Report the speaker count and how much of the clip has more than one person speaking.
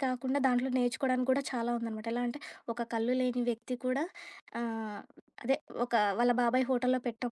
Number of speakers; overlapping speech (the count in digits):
1, no overlap